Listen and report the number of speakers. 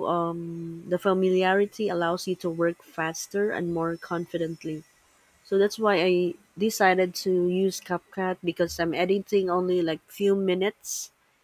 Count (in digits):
1